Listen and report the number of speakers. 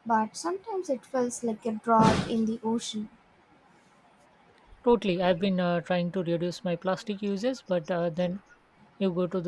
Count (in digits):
2